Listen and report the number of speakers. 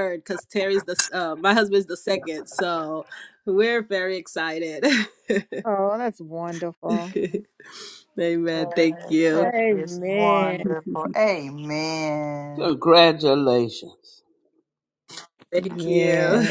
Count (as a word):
four